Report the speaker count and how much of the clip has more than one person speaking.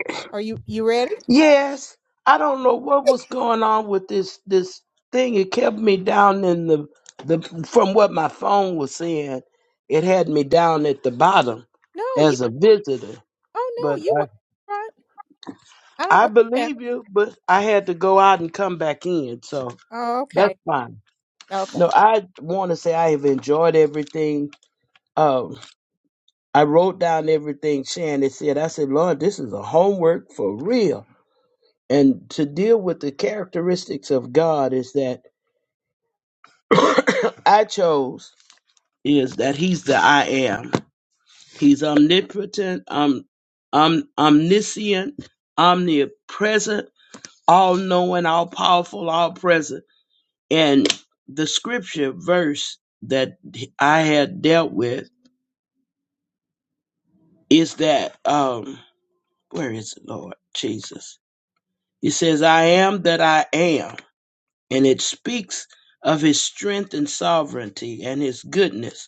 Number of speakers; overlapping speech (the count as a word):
two, about 2%